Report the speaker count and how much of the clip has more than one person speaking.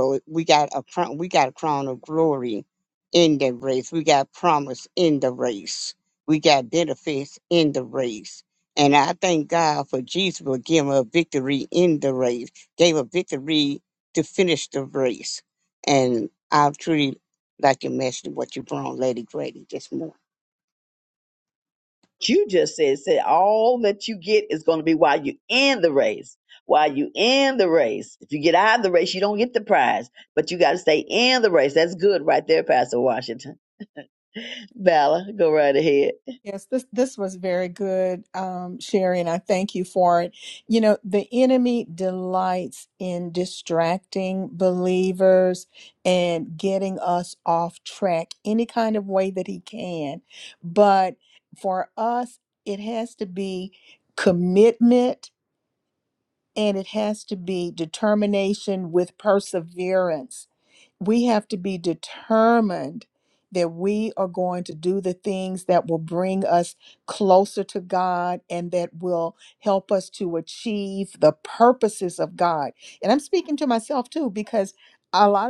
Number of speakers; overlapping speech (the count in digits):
3, no overlap